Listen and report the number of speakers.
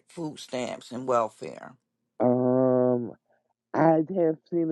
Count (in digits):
2